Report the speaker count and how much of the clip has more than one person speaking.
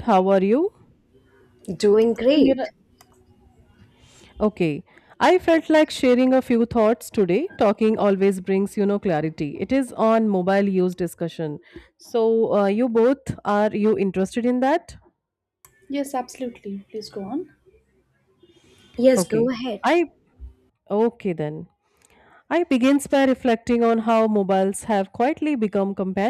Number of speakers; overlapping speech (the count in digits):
3, about 3%